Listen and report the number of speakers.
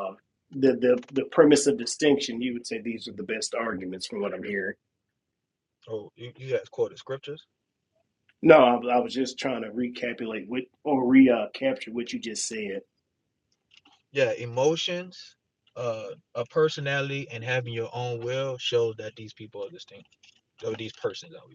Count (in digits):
2